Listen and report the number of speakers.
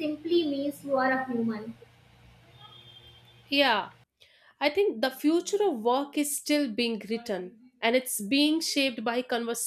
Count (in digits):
2